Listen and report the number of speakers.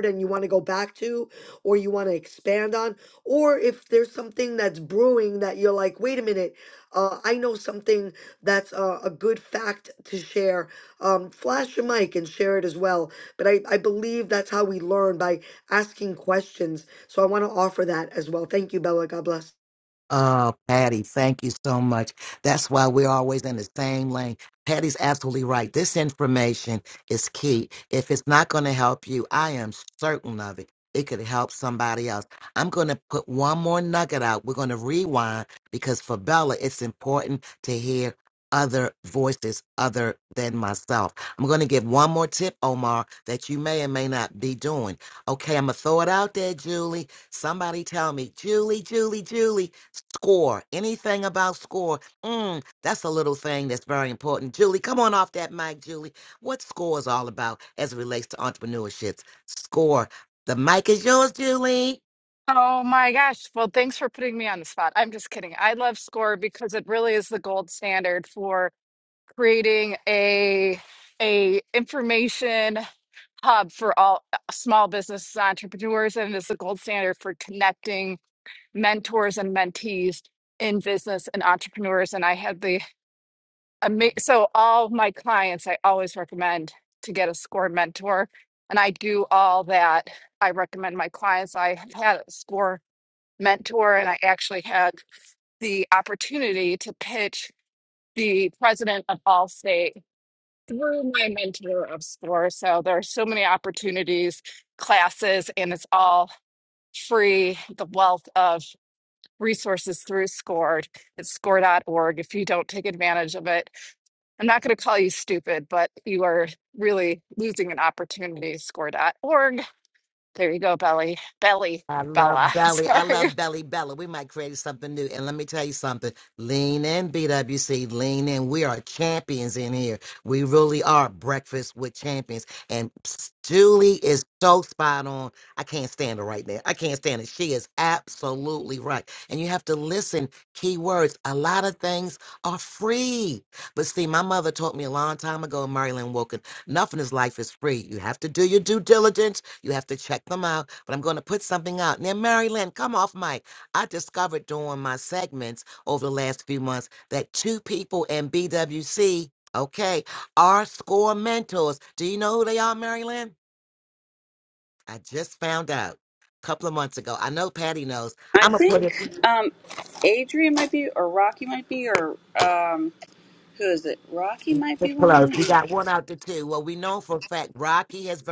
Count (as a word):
four